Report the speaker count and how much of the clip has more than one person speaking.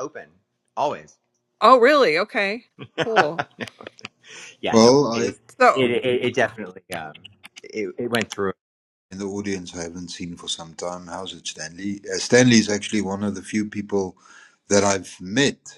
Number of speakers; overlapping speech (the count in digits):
3, about 7%